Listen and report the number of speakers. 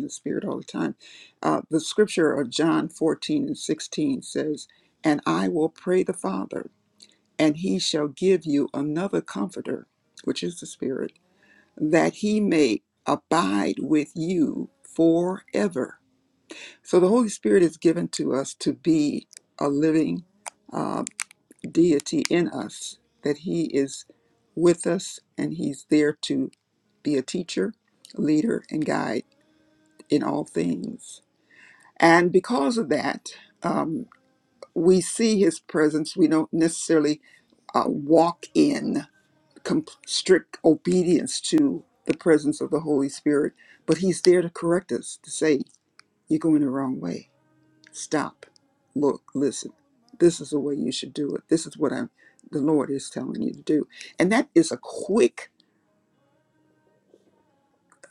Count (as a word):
one